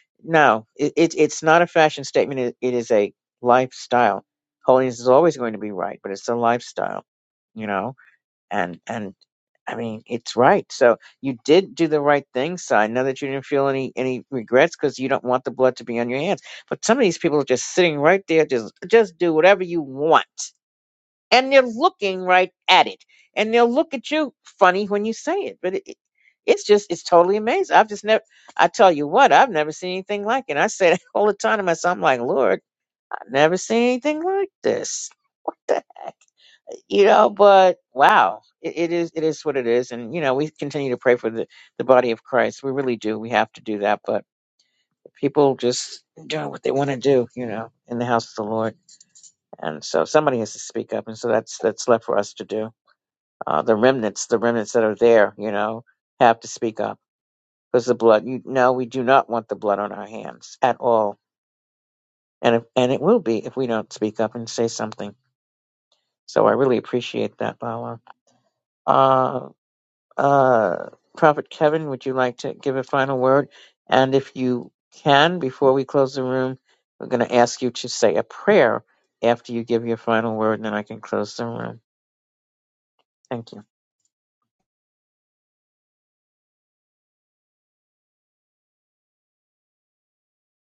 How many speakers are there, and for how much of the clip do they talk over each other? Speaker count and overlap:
1, no overlap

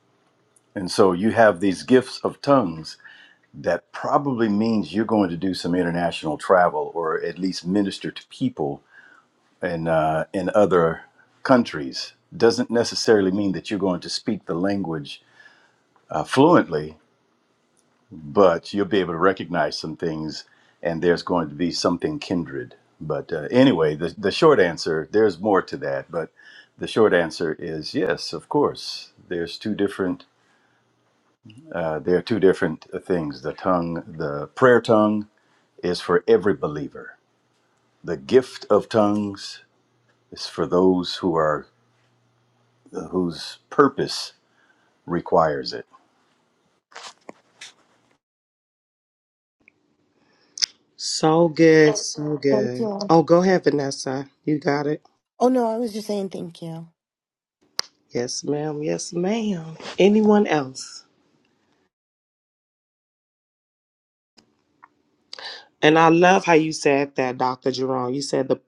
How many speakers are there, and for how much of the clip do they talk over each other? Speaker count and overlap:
3, about 1%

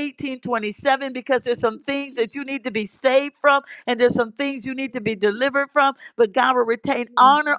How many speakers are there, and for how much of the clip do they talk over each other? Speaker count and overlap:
1, no overlap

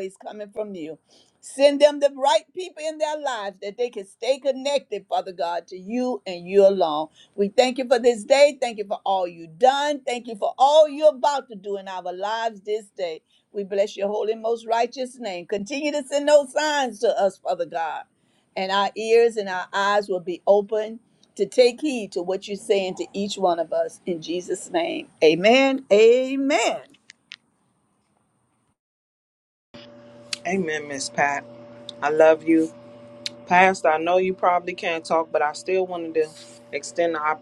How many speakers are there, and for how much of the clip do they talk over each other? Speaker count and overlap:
2, no overlap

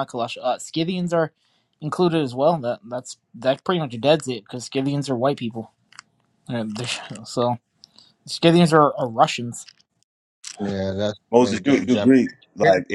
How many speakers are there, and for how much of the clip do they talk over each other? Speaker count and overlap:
3, about 6%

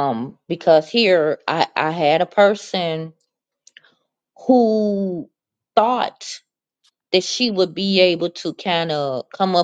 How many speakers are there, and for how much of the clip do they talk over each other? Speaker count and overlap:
1, no overlap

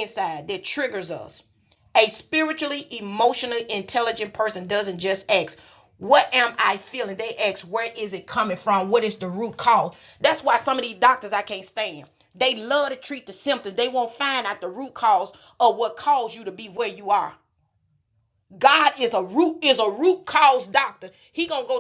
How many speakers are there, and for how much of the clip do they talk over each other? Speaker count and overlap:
1, no overlap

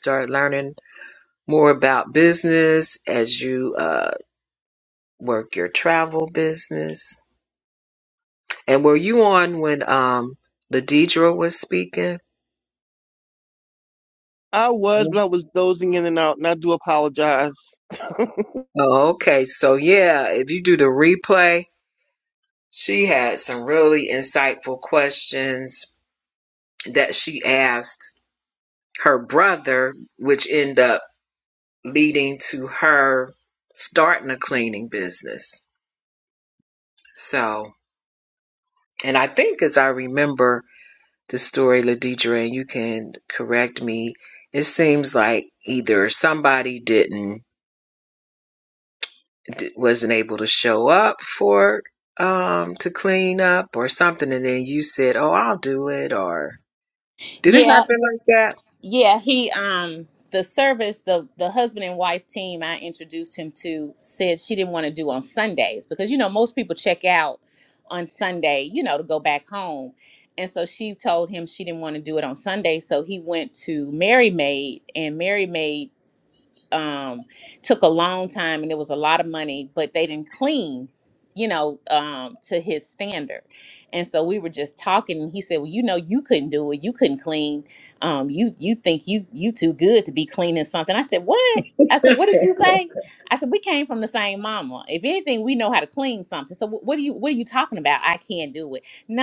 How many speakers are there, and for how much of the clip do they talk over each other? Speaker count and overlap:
3, about 1%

